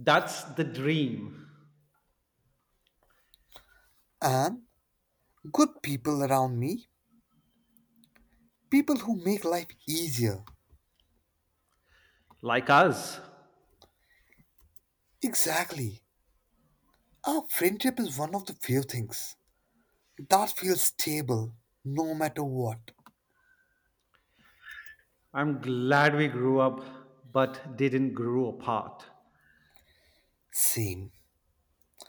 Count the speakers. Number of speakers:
two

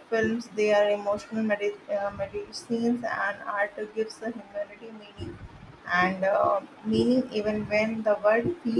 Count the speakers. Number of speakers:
one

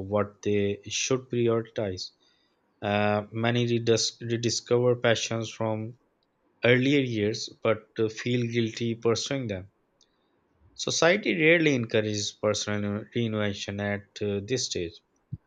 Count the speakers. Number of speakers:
one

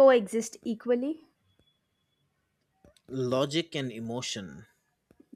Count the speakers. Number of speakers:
two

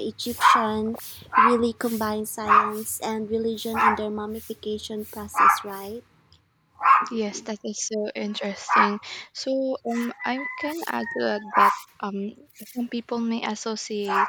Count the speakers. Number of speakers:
two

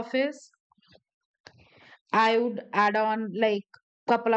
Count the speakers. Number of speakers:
one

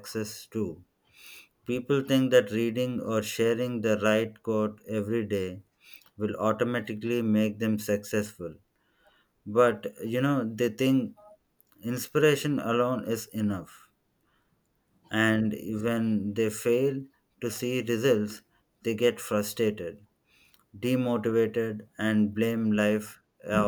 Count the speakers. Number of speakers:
one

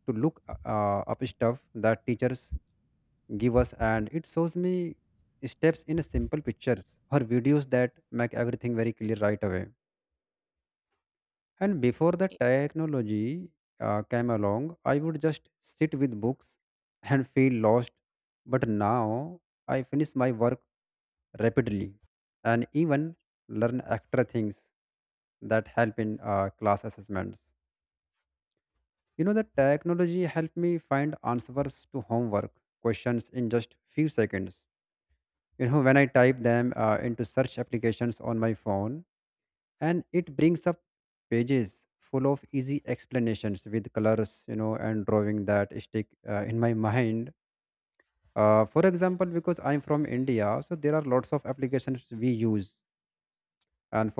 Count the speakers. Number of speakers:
one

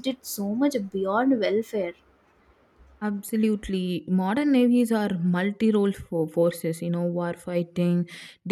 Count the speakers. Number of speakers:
two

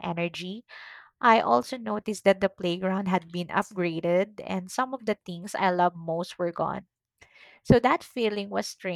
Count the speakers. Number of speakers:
one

